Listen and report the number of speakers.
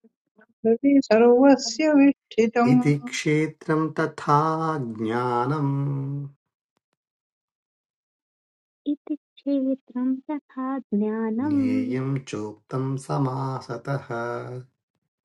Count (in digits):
3